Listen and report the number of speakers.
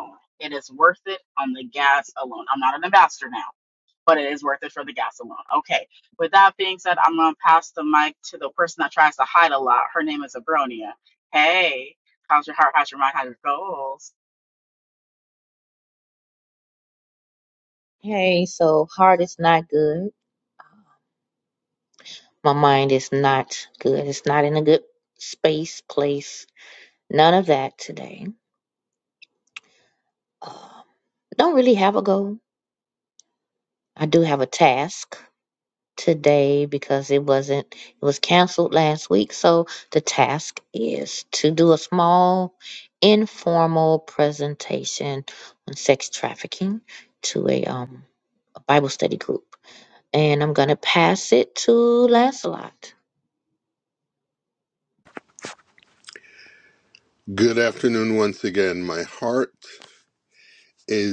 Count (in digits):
3